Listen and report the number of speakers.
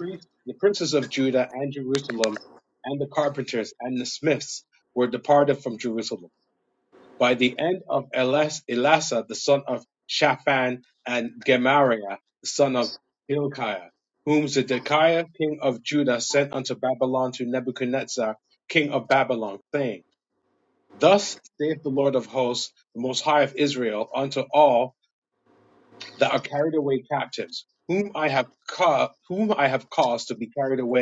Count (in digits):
1